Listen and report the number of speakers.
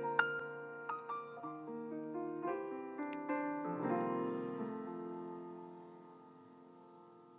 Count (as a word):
zero